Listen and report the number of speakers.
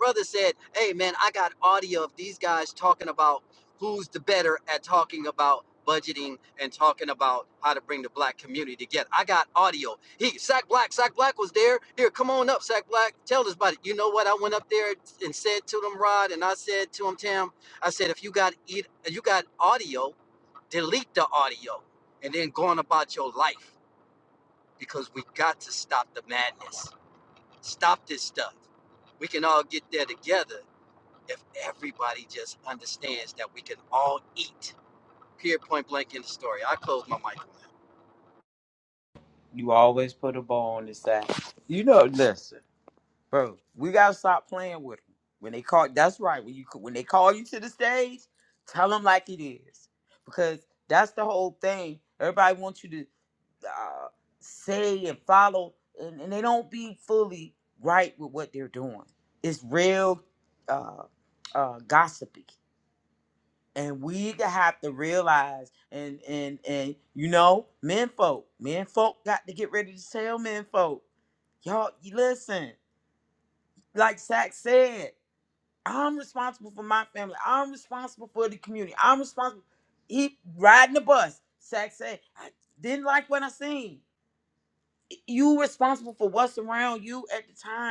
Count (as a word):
two